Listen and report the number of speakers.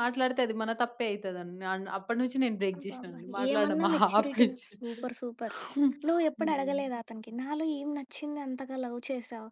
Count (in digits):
2